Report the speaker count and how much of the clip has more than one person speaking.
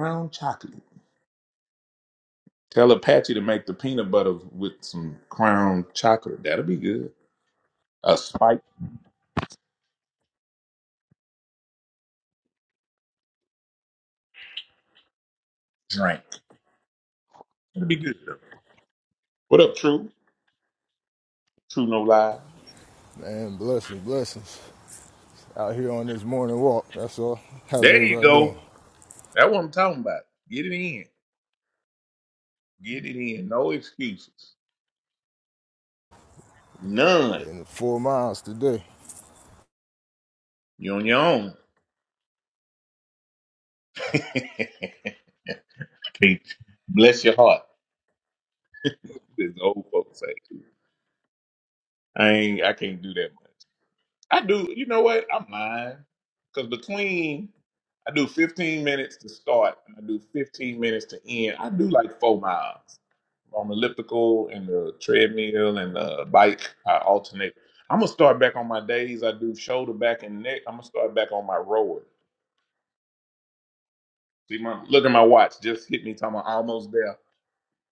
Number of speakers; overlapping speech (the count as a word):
two, about 1%